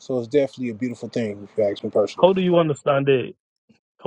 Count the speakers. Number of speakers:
two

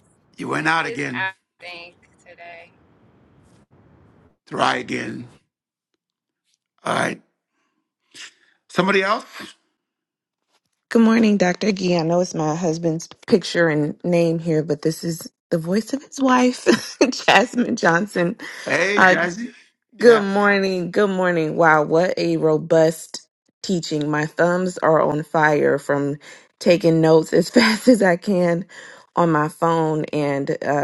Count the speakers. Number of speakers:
three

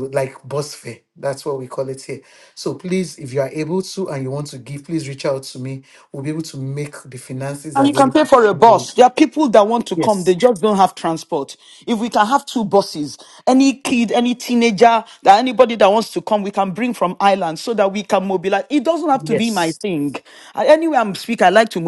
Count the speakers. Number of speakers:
two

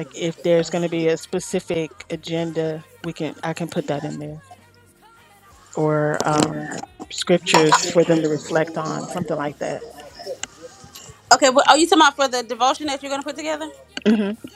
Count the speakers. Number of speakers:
two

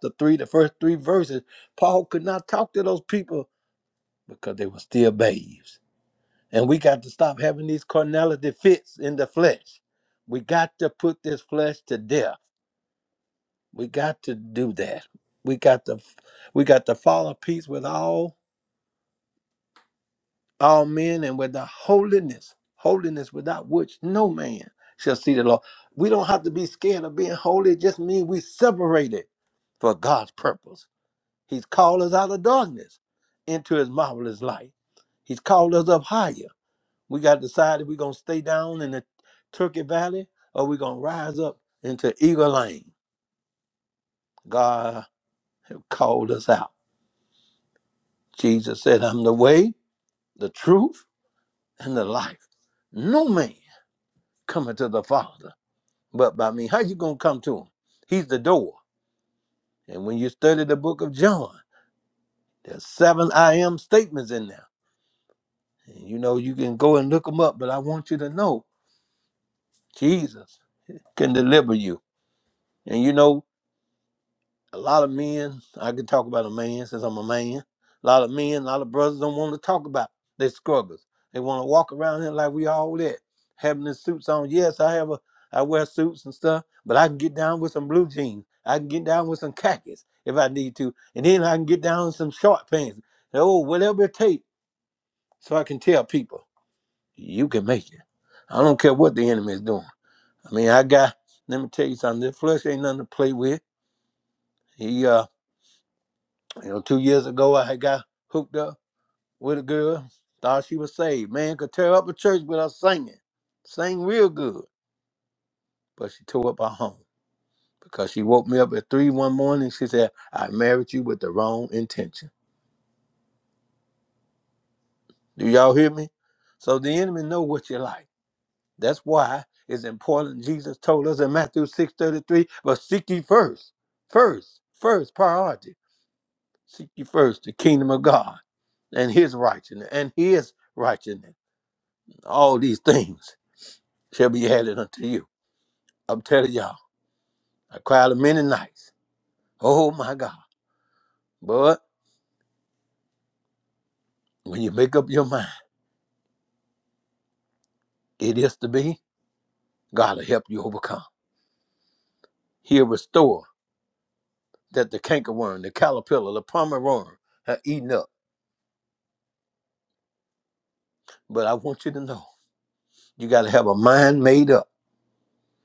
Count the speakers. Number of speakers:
one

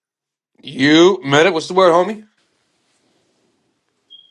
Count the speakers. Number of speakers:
one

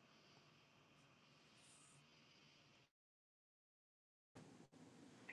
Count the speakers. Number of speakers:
zero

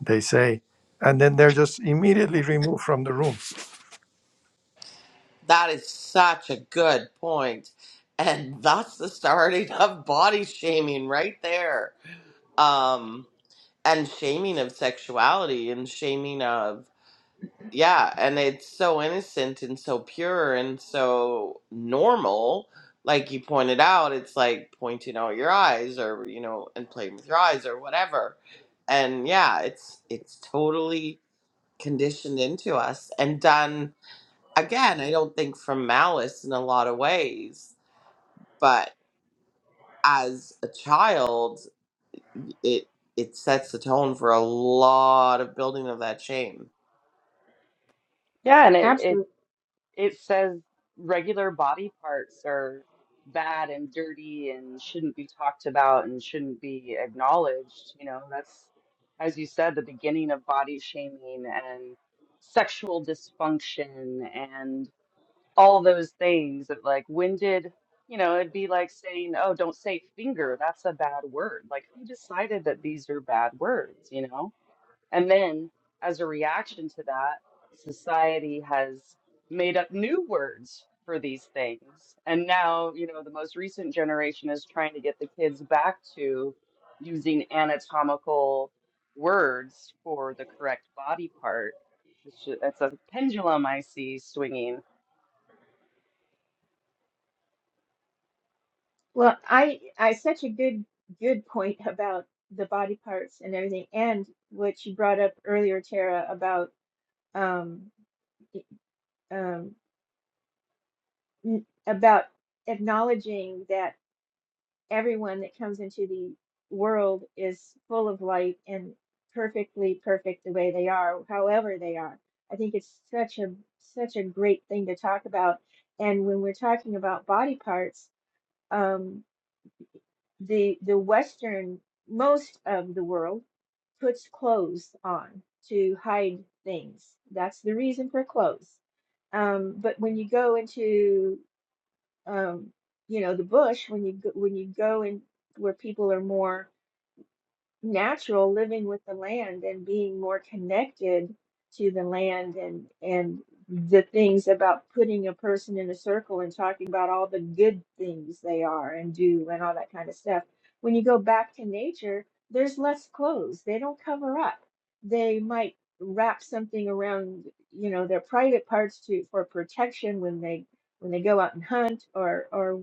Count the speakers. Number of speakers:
four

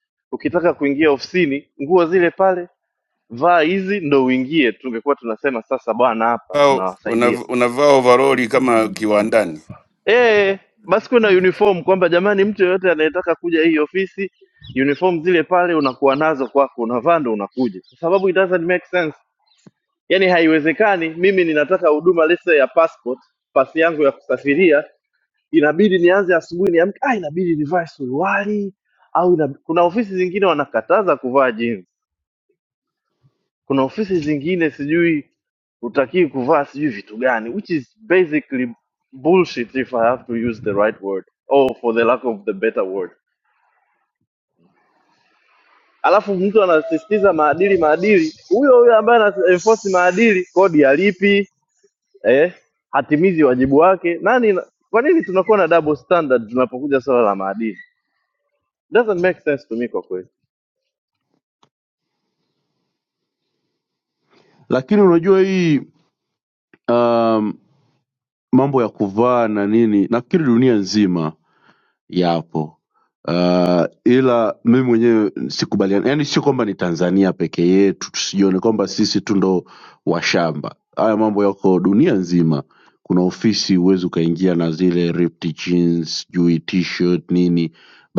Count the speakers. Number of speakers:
three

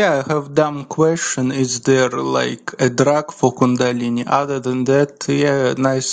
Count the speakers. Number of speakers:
one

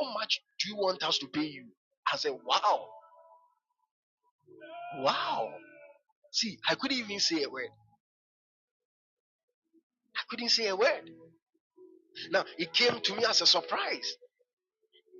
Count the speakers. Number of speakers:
one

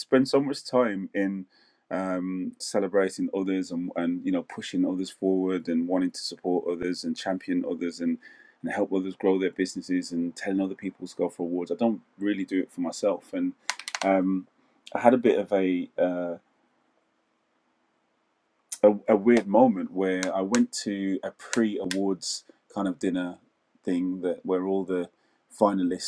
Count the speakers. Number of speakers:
one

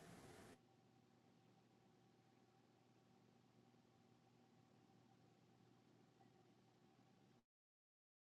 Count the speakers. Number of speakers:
zero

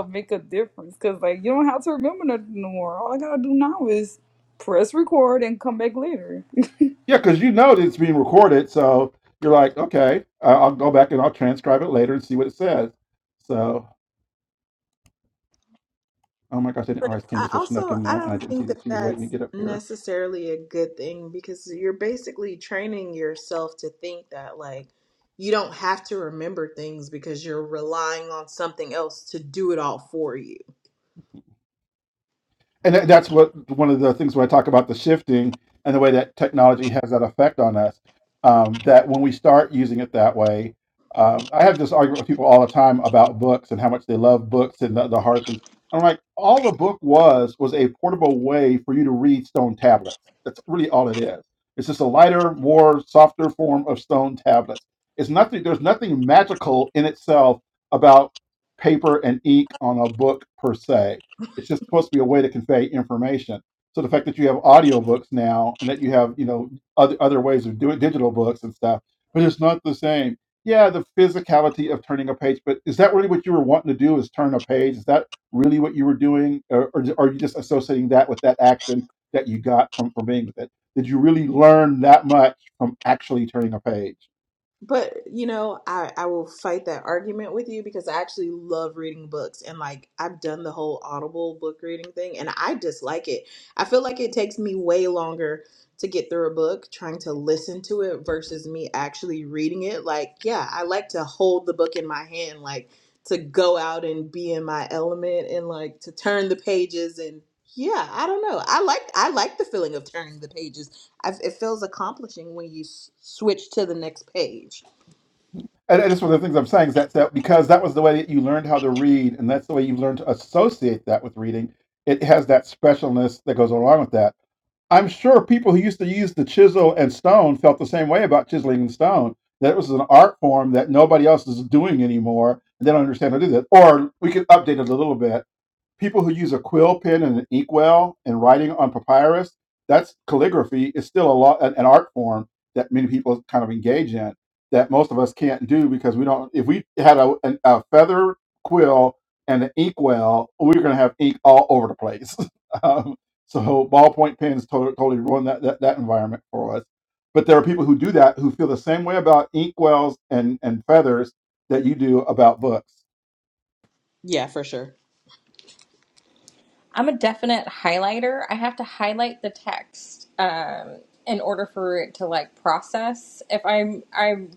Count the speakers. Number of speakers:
four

